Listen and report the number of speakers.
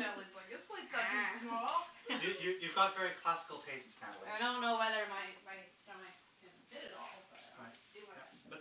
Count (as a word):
three